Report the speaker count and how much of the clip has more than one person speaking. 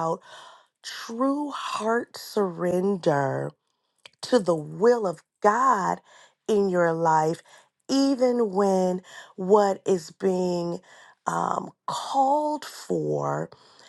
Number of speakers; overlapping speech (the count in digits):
1, no overlap